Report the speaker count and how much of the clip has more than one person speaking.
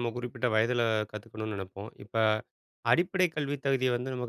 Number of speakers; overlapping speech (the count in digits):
1, no overlap